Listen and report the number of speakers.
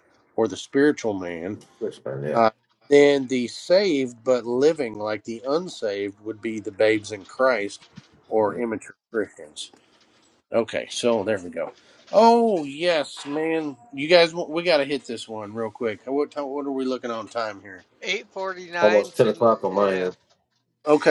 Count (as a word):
three